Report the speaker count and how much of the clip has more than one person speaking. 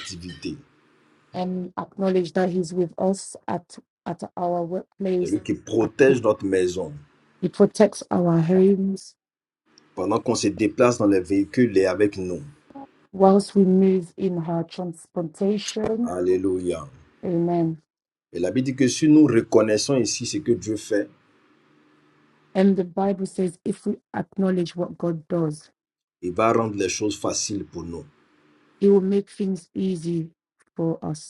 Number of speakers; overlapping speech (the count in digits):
2, about 1%